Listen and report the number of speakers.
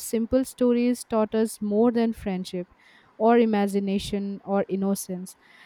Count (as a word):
one